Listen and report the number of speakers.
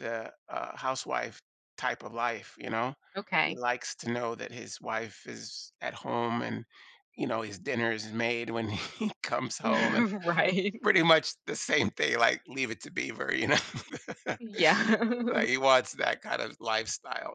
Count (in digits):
2